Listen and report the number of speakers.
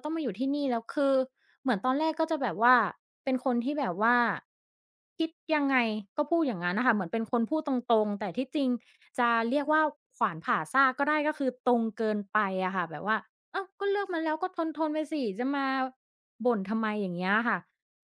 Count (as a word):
one